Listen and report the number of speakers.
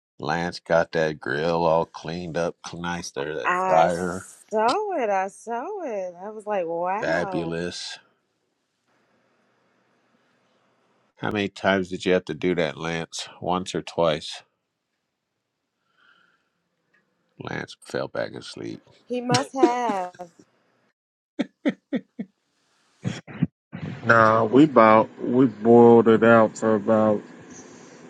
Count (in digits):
3